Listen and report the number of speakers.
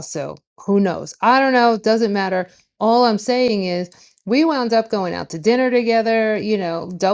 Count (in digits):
1